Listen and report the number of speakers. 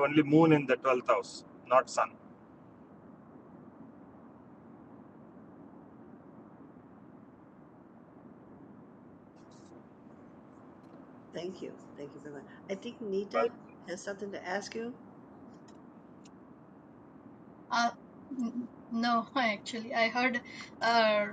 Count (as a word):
three